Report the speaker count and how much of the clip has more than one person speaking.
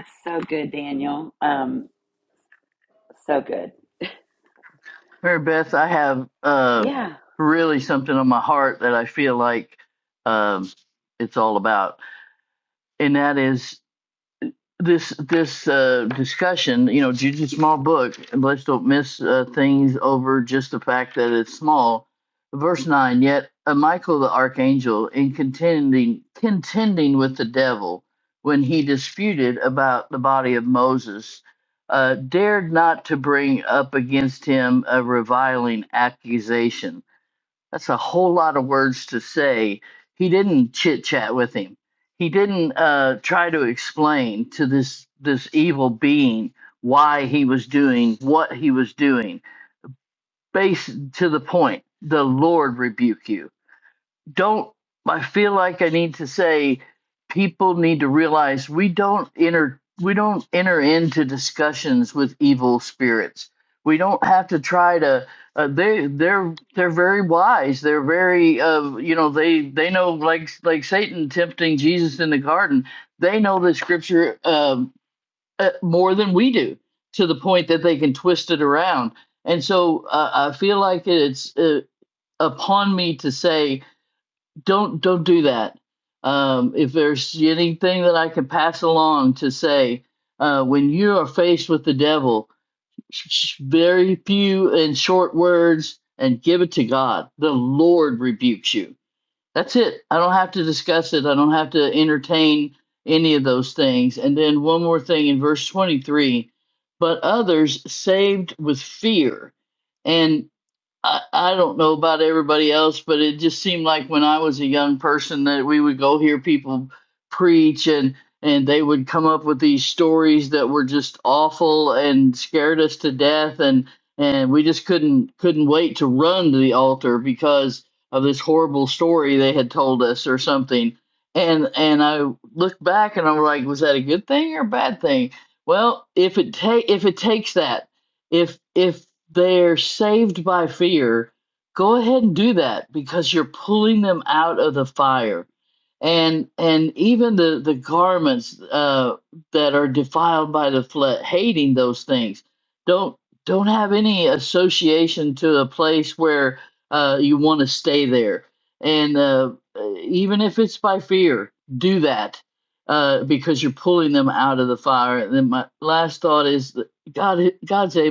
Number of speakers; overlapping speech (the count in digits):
2, under 1%